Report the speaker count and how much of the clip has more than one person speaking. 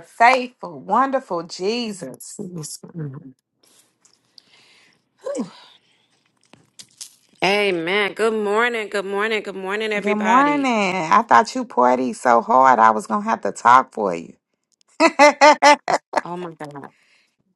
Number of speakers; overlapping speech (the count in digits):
2, about 4%